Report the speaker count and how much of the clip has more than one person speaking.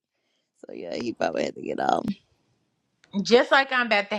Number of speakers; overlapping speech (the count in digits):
2, no overlap